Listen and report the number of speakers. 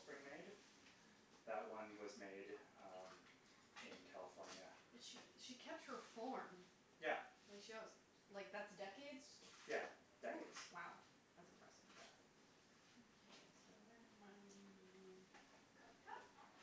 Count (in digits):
2